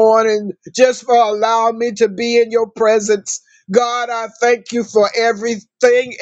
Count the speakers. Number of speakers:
1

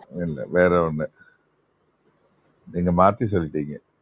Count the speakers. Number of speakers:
1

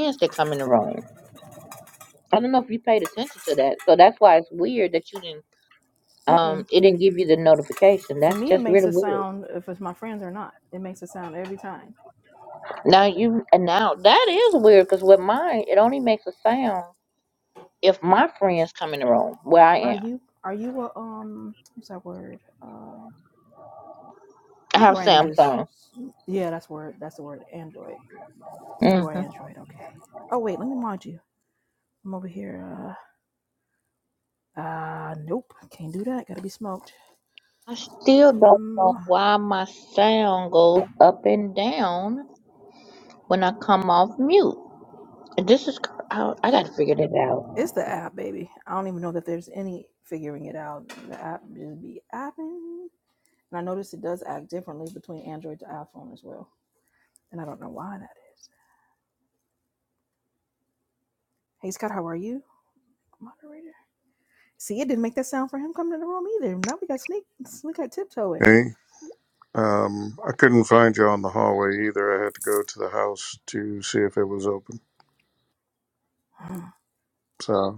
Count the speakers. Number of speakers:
3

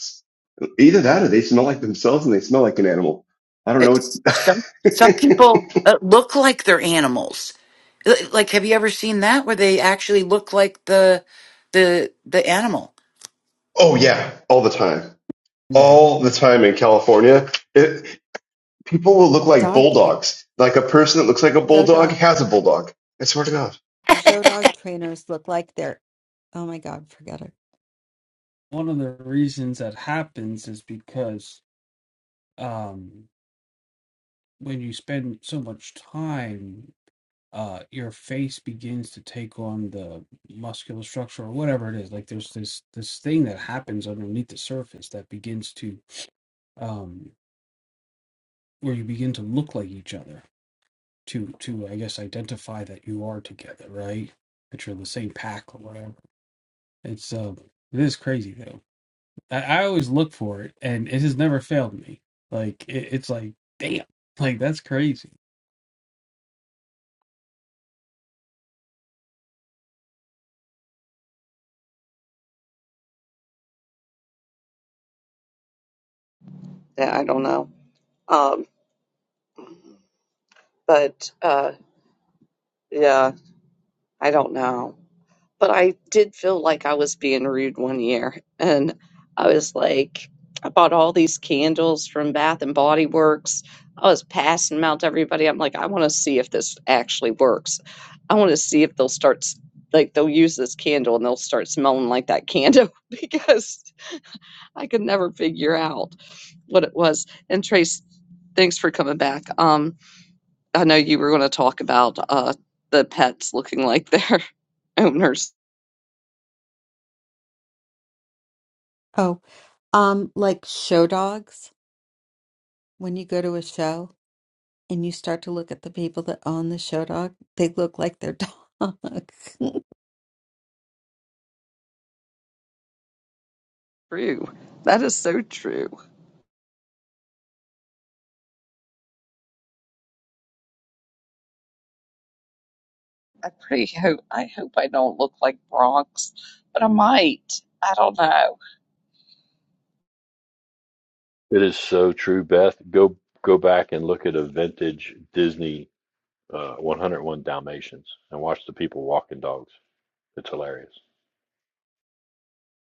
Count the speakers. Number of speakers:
6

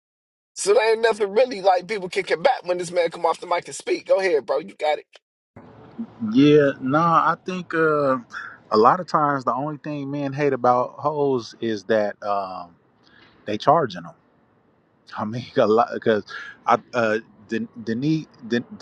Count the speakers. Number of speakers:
2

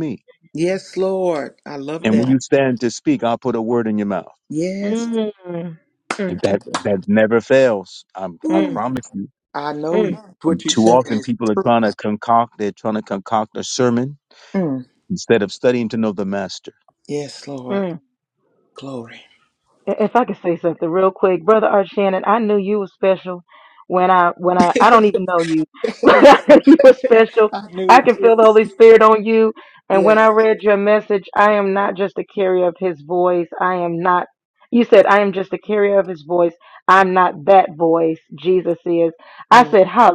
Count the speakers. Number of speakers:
3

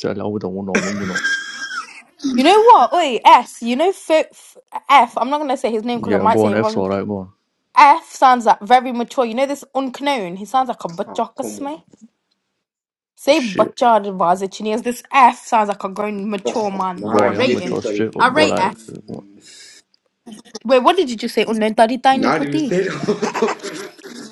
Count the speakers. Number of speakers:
3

